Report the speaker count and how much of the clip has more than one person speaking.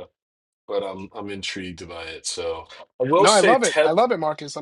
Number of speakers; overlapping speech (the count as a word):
two, about 16%